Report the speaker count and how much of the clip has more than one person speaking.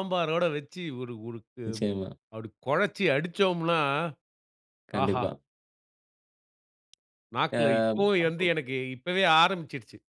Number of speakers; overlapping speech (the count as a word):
two, about 7%